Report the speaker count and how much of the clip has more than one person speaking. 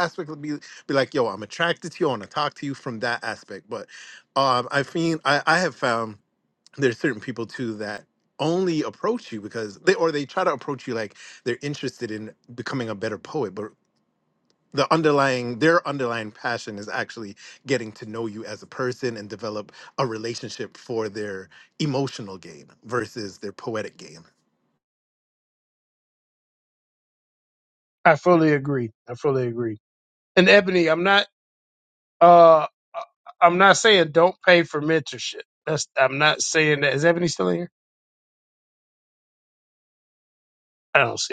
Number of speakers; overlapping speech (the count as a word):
two, no overlap